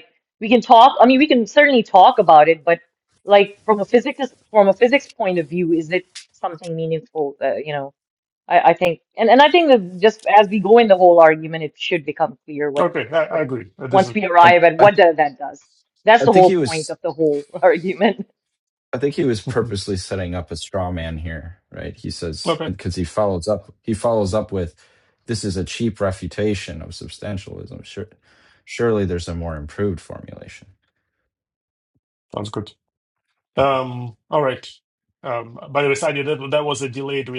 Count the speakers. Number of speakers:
3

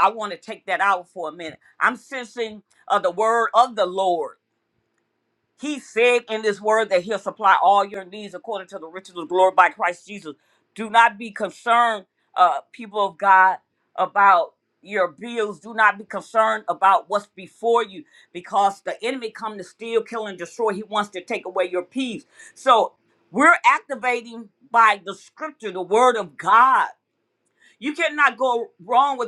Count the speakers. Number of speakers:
1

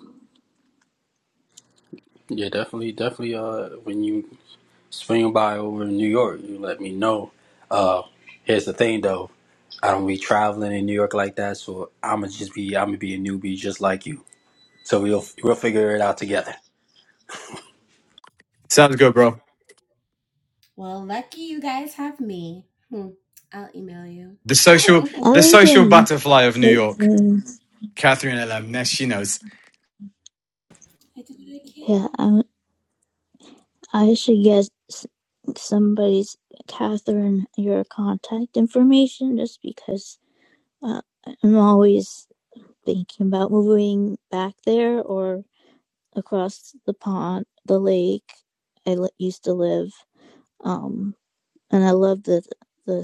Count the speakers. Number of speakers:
4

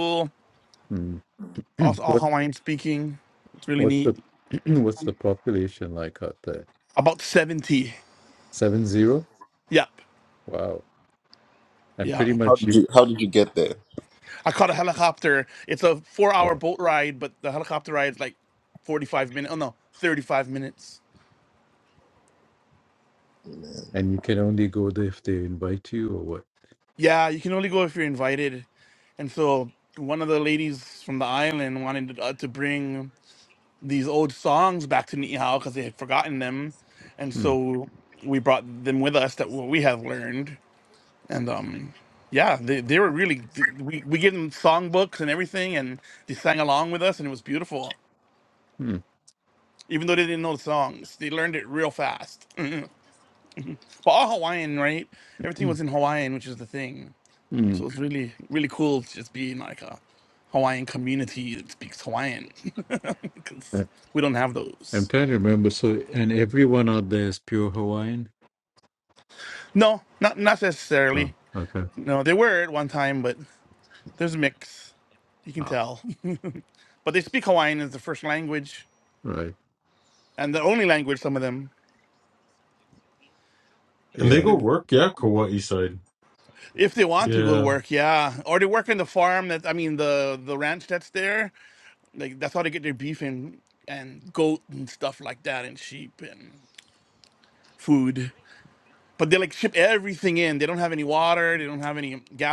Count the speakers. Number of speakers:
4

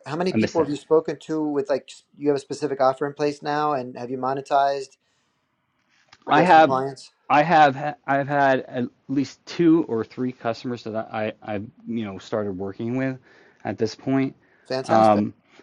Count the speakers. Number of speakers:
2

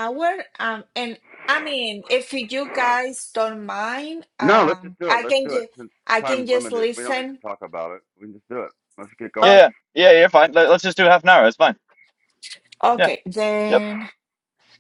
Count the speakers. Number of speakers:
3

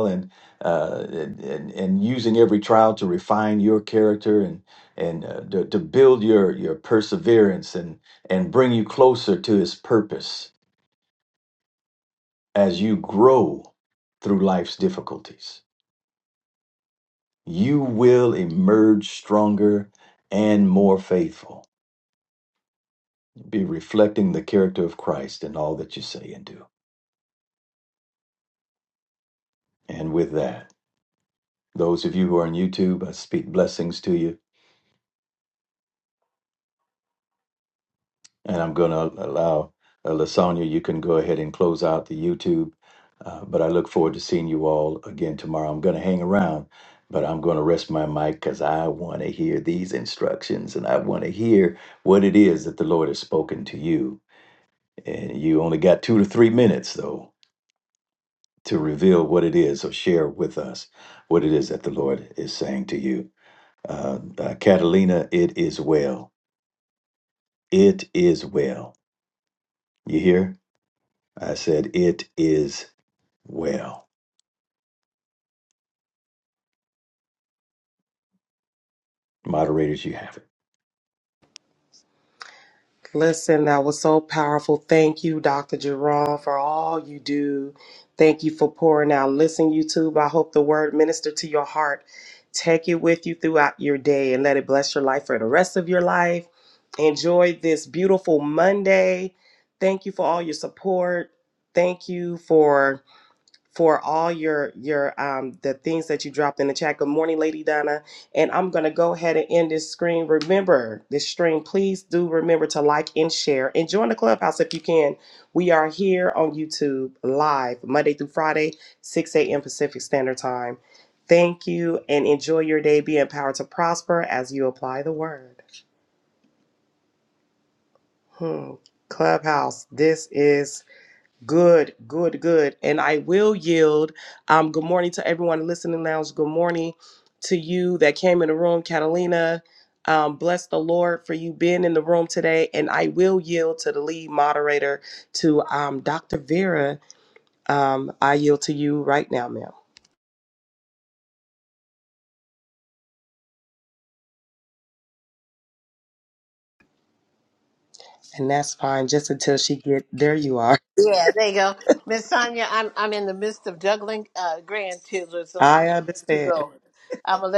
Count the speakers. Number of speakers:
3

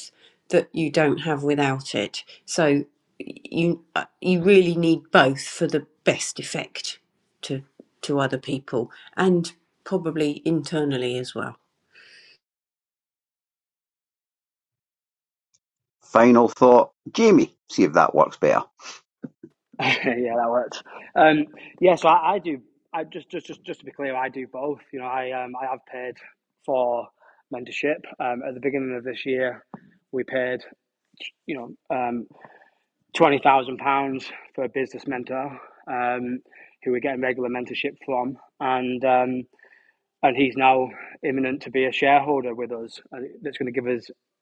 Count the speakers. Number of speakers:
3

